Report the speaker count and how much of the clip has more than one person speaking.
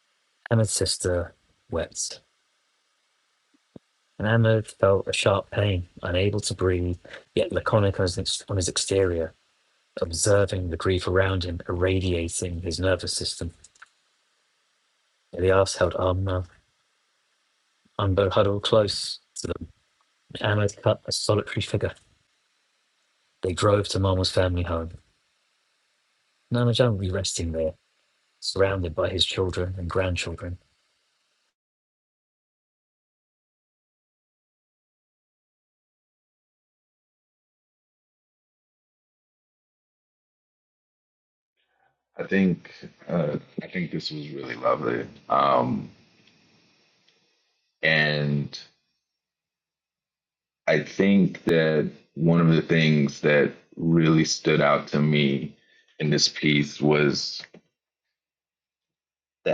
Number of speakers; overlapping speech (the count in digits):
2, no overlap